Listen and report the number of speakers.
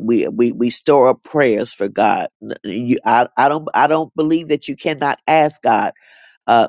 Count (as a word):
one